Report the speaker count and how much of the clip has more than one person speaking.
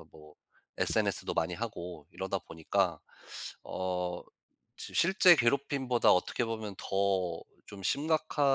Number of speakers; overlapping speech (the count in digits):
1, no overlap